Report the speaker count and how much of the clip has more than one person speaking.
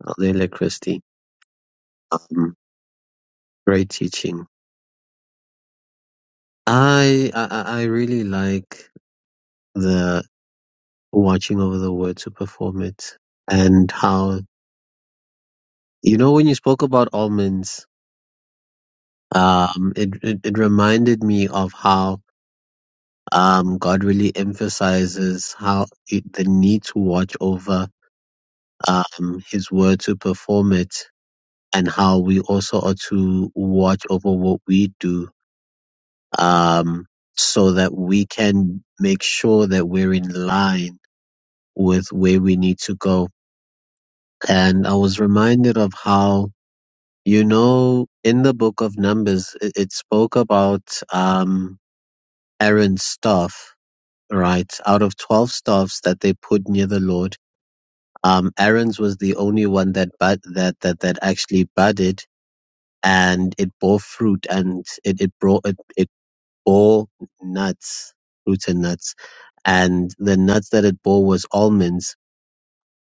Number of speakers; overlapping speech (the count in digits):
1, no overlap